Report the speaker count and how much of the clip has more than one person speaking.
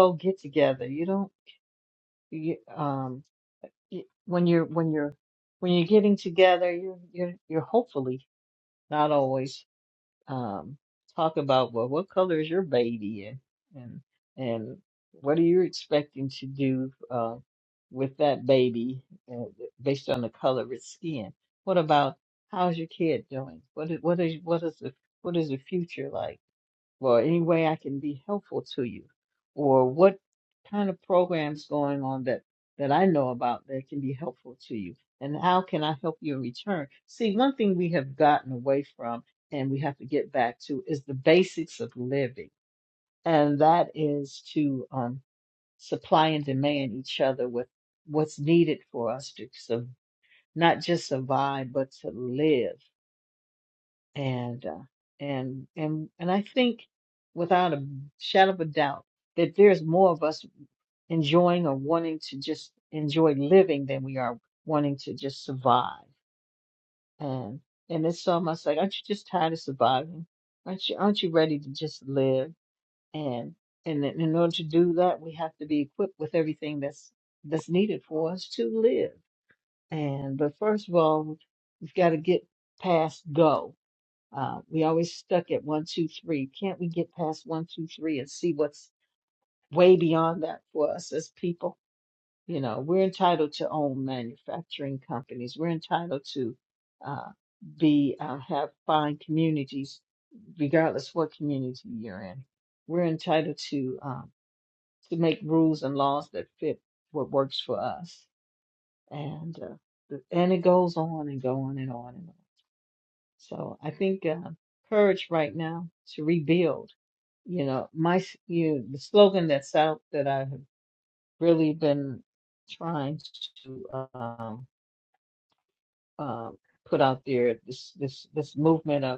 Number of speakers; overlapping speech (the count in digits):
1, no overlap